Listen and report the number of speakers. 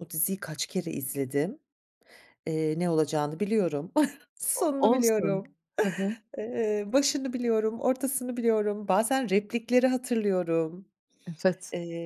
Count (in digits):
2